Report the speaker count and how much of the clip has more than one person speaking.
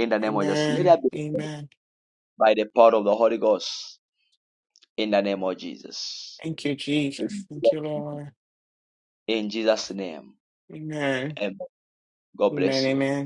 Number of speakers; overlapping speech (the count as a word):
two, about 12%